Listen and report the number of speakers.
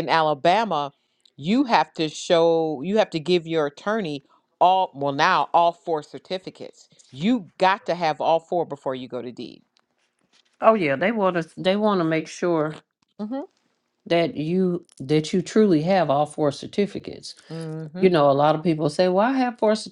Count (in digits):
2